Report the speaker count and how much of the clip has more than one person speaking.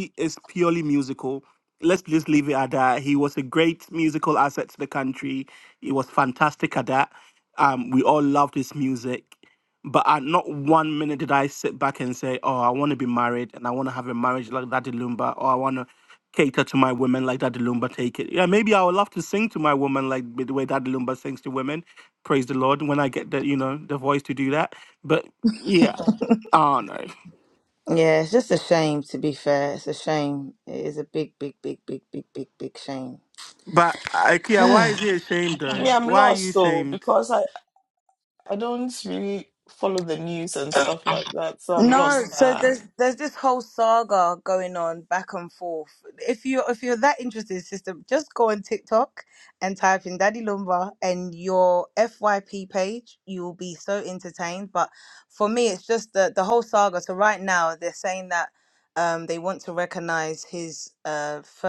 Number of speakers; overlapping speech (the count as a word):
three, about 4%